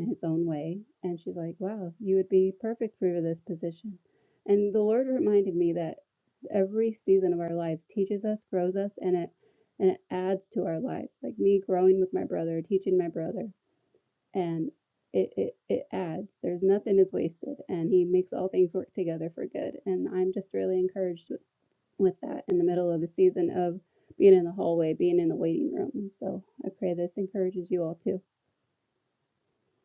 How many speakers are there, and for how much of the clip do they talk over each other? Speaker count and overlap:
1, no overlap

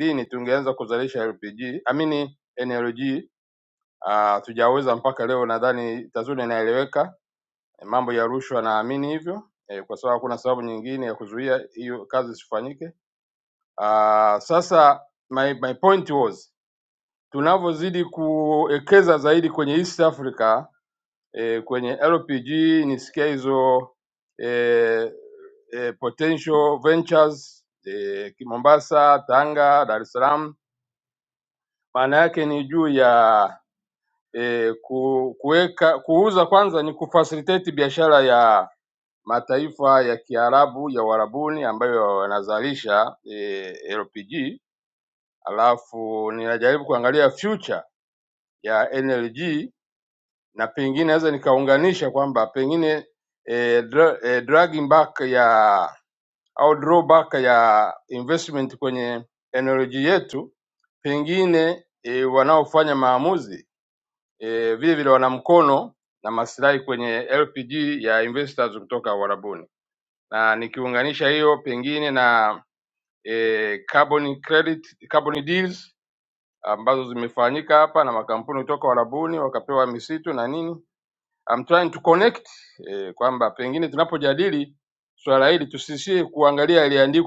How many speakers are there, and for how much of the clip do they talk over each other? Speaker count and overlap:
1, no overlap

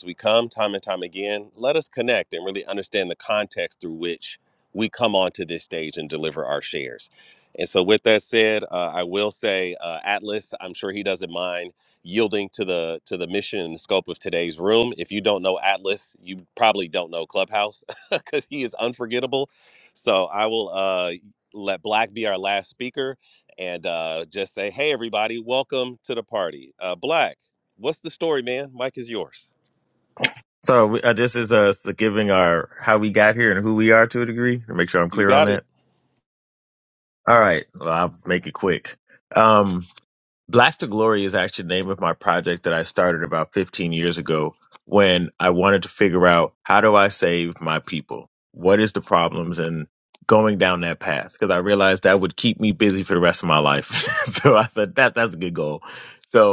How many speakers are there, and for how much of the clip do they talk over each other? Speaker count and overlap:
2, about 1%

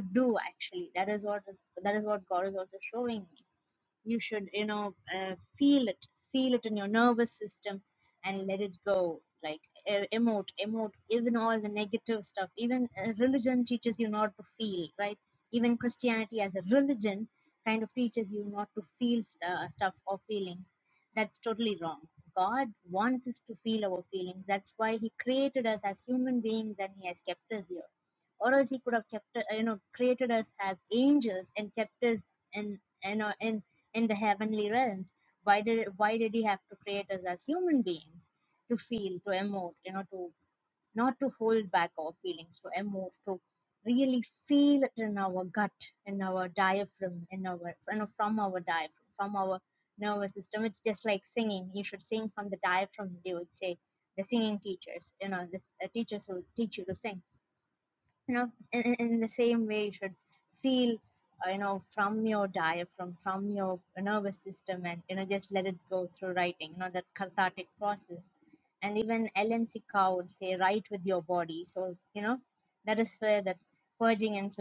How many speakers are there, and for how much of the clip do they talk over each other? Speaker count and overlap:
1, no overlap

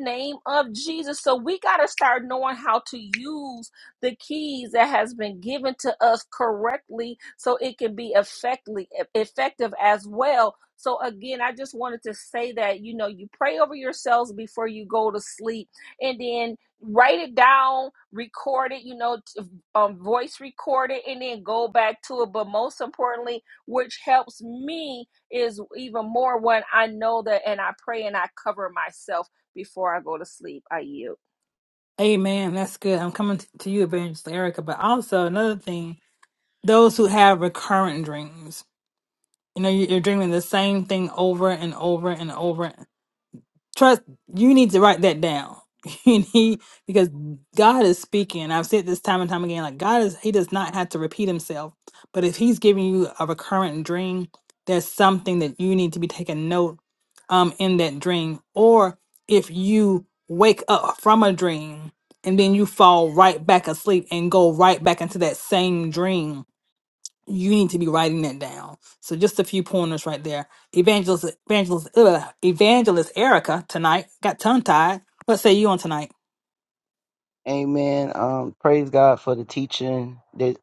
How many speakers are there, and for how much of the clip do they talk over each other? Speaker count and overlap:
3, no overlap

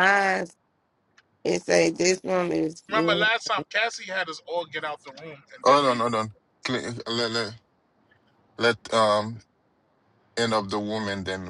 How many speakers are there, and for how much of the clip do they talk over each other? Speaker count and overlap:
3, about 8%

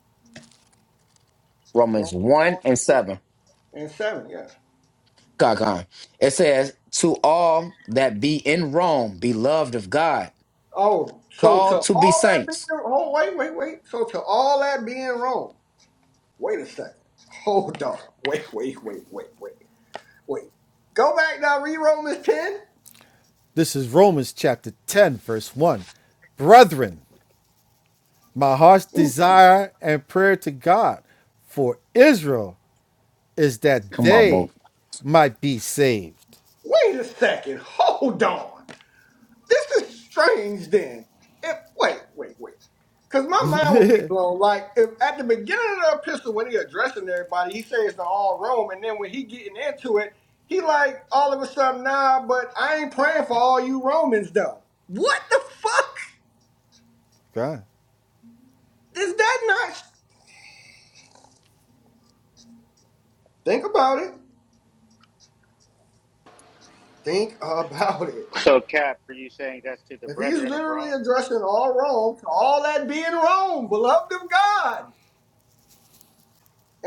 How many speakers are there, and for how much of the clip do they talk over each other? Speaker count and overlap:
4, about 4%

